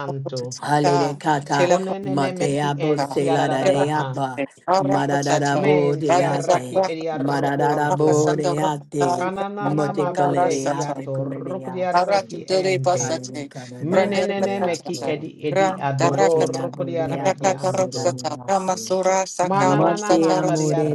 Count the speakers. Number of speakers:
3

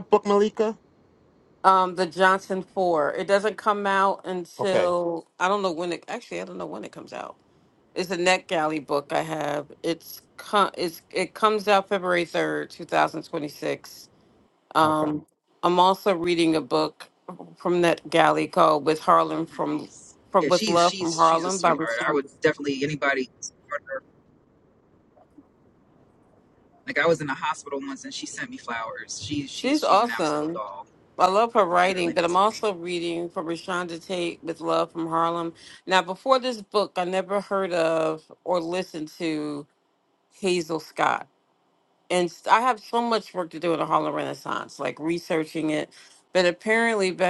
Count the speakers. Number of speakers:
3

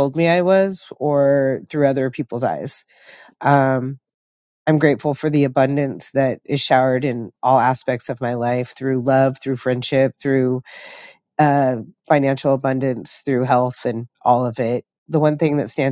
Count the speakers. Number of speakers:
1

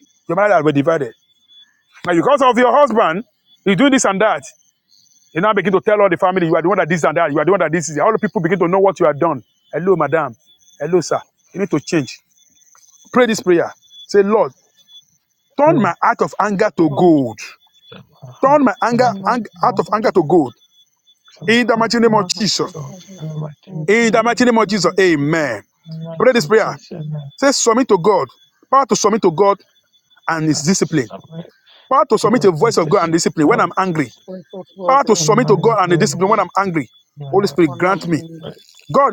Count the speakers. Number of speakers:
3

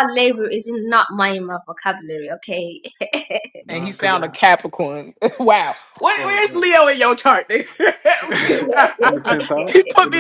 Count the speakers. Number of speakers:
3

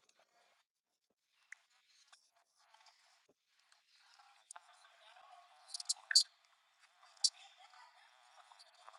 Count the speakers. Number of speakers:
0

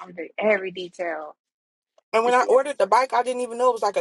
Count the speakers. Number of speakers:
2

